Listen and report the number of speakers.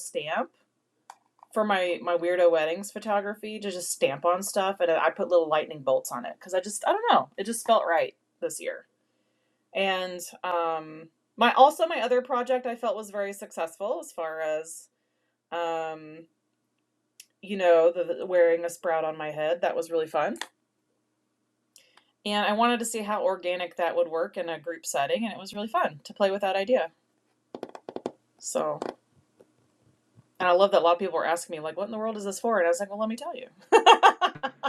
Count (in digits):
1